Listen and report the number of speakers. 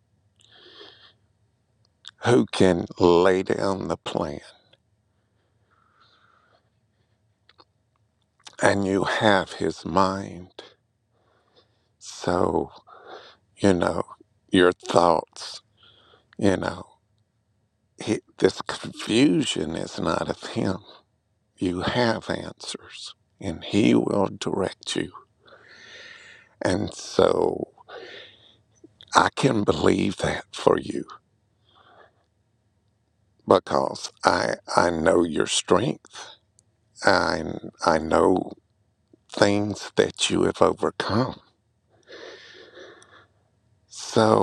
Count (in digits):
1